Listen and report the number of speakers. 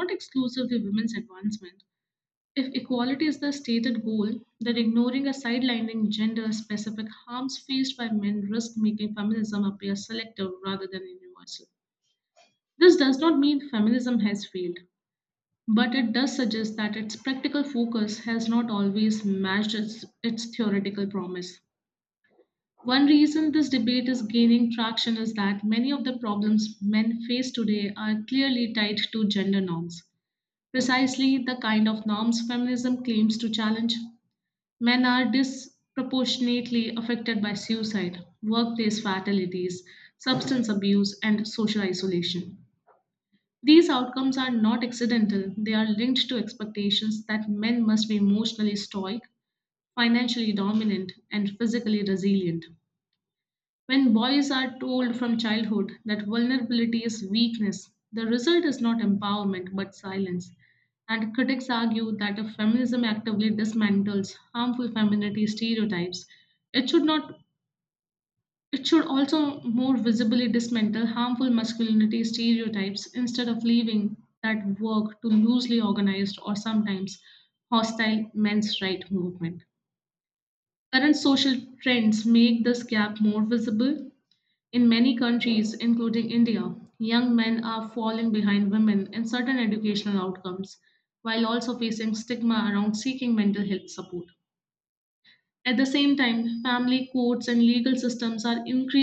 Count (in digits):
1